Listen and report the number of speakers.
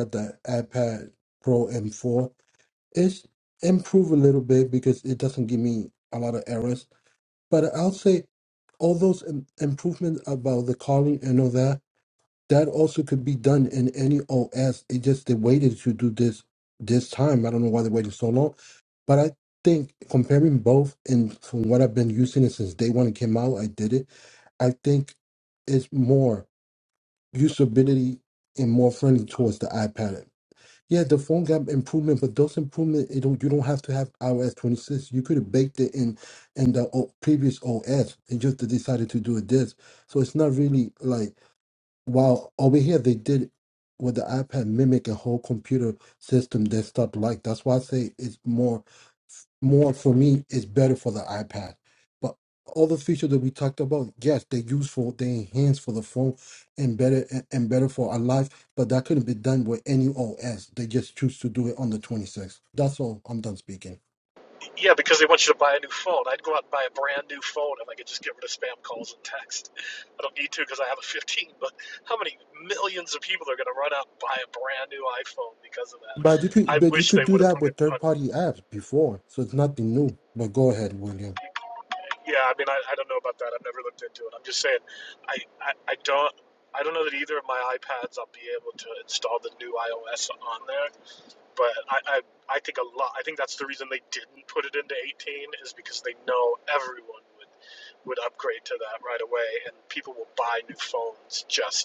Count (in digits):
2